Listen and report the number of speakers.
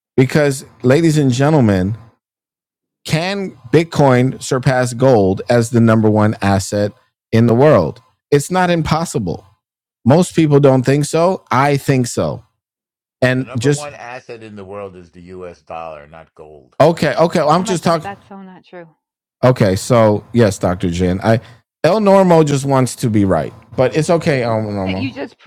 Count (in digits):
3